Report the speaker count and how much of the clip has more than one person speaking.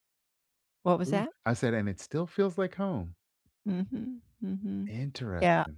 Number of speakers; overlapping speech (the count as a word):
two, about 9%